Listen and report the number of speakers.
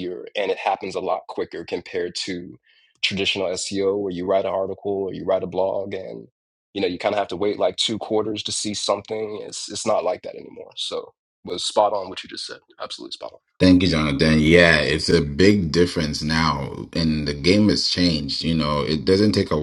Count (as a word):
two